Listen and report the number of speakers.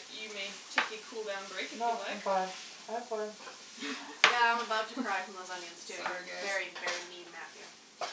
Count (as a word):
three